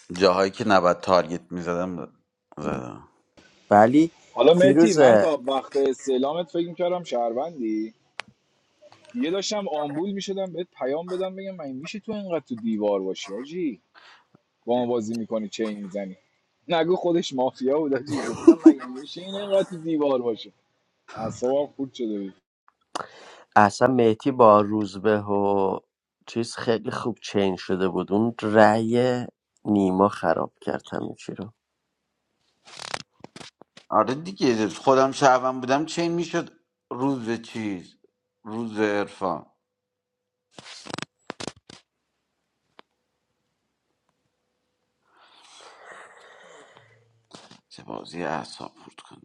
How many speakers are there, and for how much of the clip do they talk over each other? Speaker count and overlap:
3, about 1%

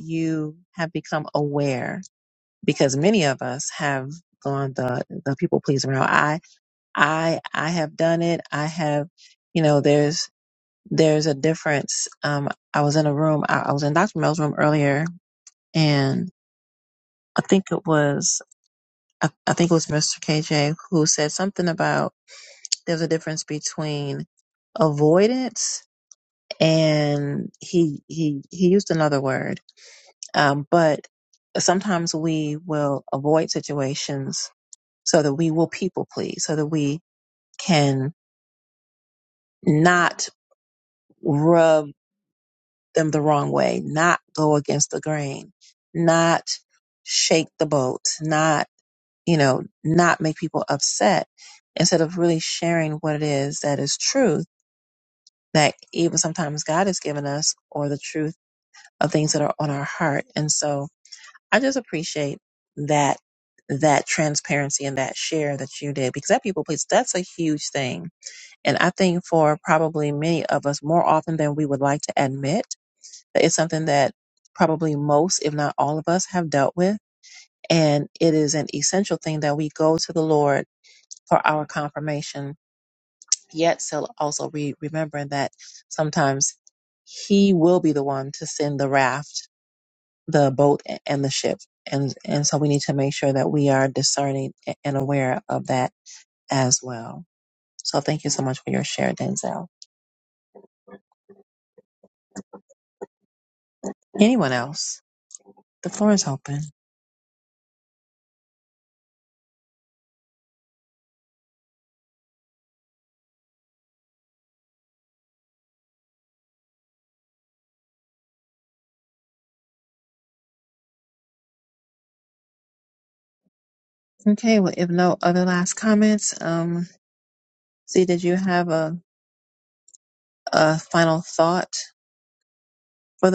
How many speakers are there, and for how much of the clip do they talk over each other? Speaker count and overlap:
1, no overlap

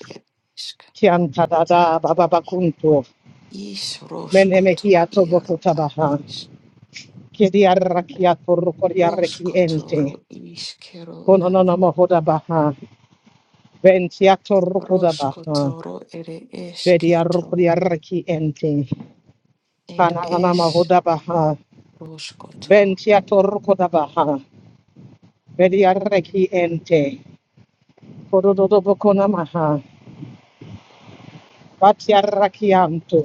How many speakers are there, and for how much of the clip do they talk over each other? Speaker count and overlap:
2, about 16%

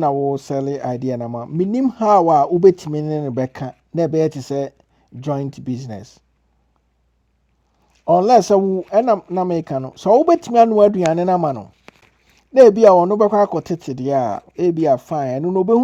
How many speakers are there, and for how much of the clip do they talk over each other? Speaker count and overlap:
1, no overlap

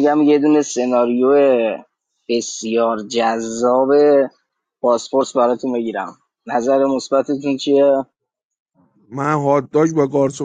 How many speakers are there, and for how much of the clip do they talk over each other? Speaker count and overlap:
2, no overlap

